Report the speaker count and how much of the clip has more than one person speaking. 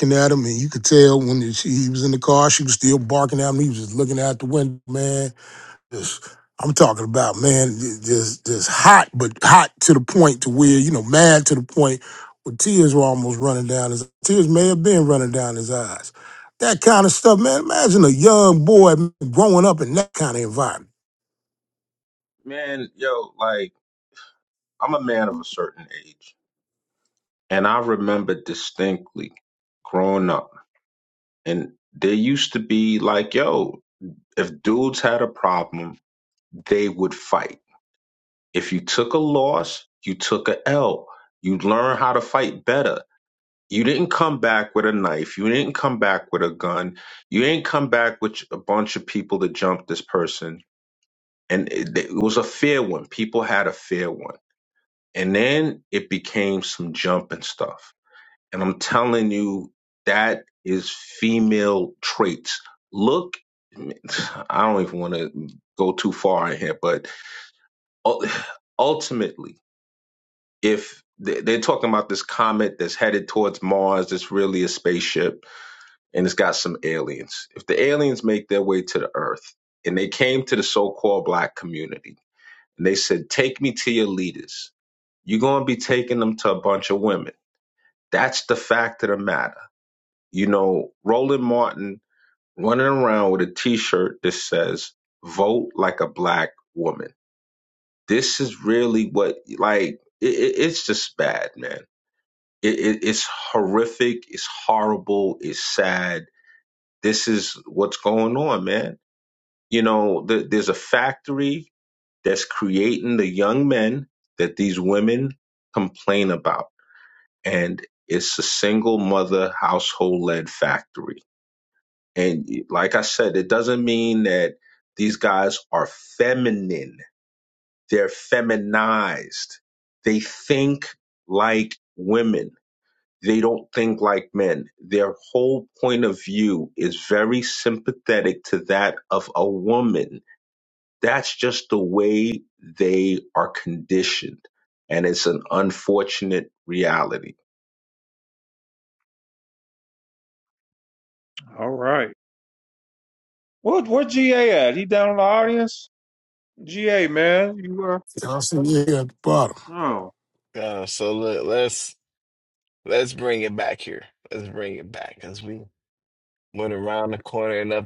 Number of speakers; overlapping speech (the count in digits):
4, no overlap